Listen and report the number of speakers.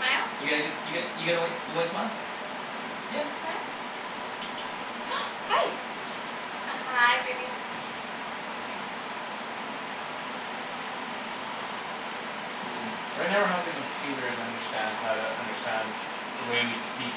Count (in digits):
3